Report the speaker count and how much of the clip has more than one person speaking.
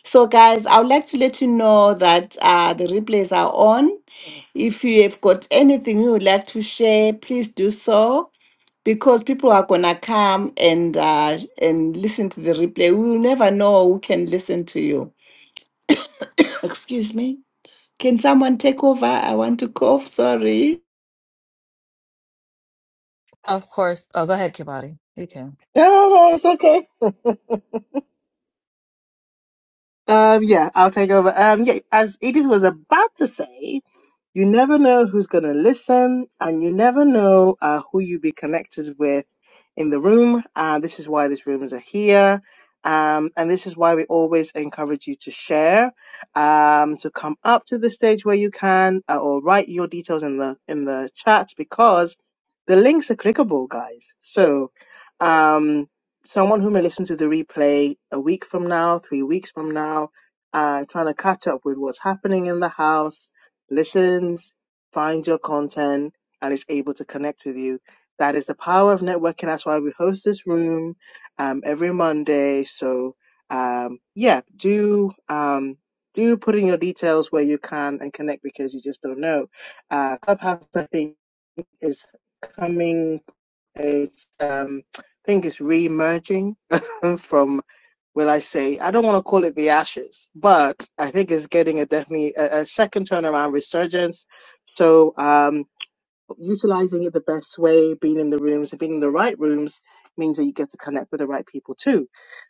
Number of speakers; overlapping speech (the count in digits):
3, no overlap